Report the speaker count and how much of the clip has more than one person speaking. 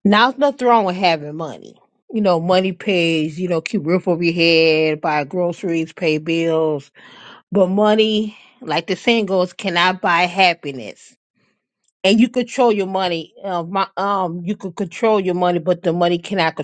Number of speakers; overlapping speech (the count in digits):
1, no overlap